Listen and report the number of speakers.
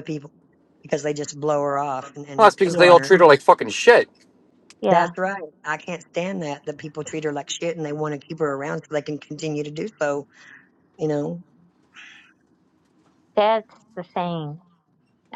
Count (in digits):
3